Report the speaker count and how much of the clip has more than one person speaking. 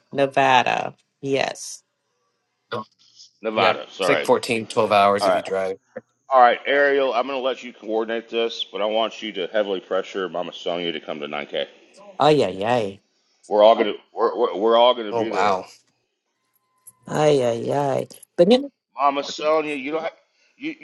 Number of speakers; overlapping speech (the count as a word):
three, about 7%